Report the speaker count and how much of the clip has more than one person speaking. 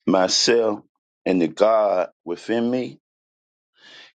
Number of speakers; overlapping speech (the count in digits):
1, no overlap